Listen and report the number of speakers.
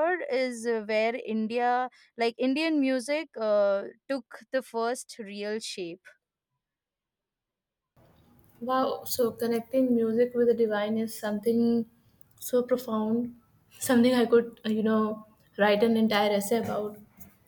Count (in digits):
2